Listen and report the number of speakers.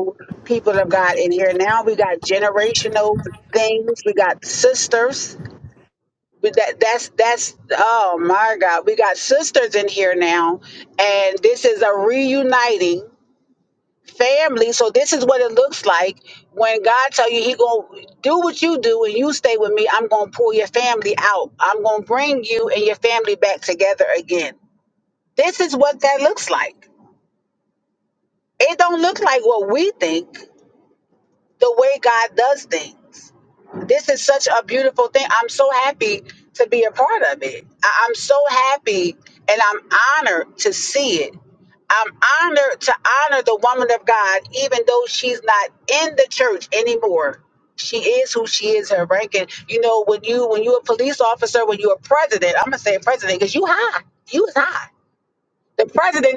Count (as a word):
one